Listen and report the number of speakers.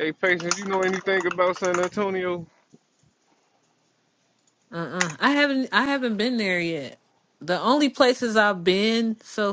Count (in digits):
2